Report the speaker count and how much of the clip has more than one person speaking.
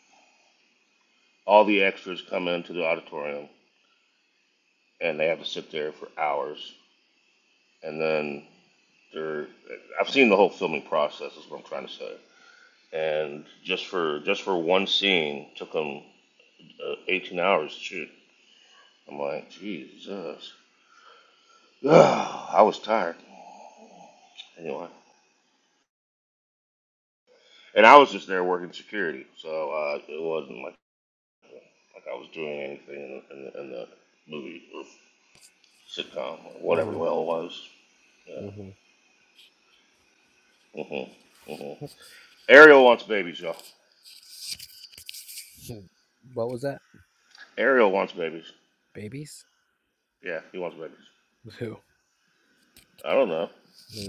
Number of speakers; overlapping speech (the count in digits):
2, about 1%